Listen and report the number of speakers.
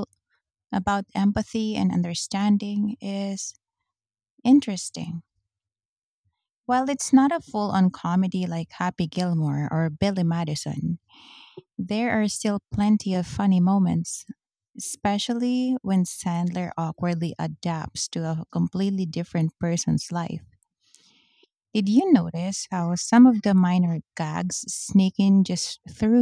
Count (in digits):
1